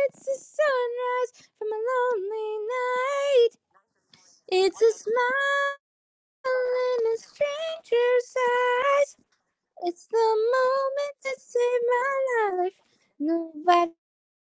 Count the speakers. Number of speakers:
1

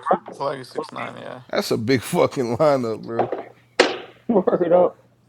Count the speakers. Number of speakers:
3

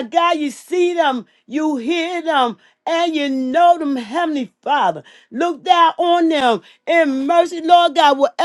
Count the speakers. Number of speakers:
1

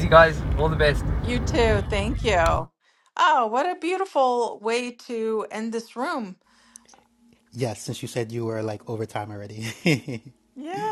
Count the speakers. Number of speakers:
3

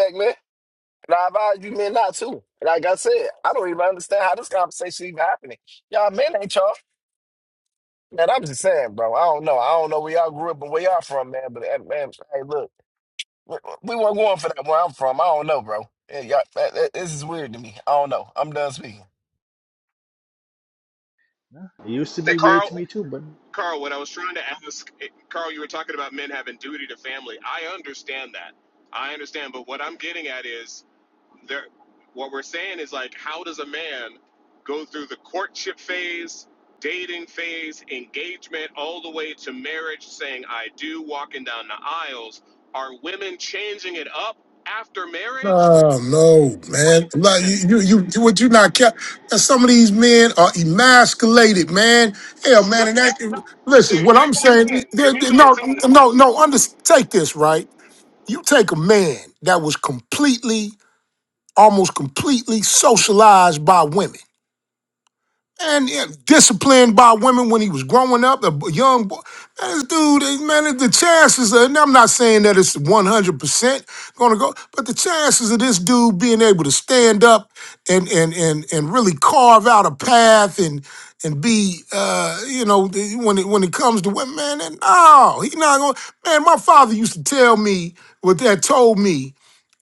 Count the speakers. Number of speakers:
4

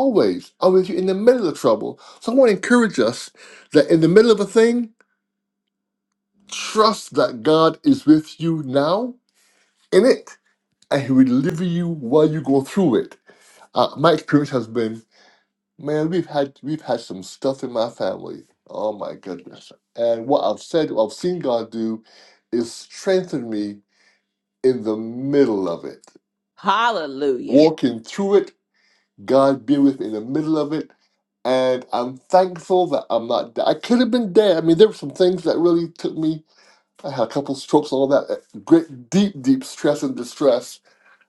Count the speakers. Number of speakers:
2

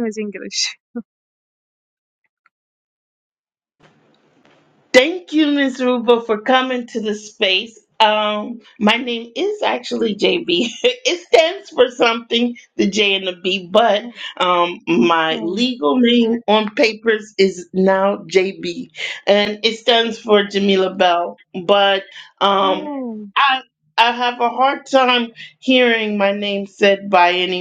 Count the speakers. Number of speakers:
2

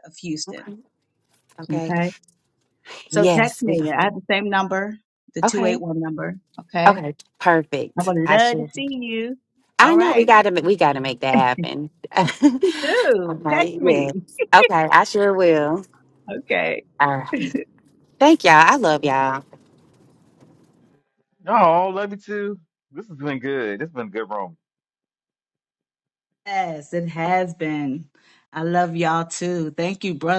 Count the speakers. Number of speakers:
3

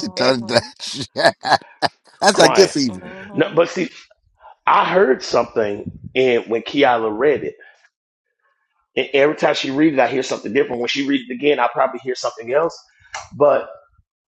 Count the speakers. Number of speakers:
2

